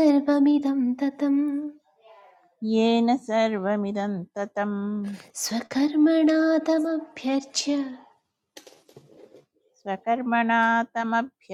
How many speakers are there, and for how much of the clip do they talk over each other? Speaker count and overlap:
2, no overlap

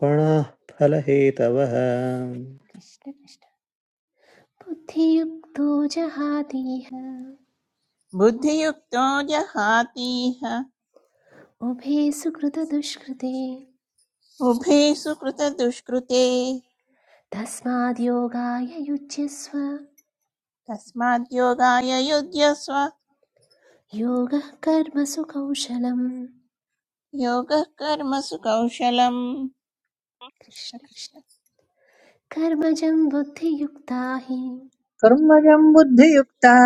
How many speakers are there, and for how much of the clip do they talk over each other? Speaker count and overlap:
4, under 1%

